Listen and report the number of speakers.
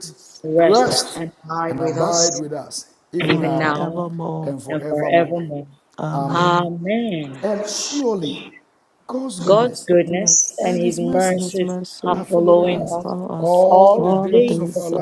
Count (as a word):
three